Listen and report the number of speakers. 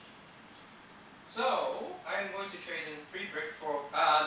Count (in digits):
1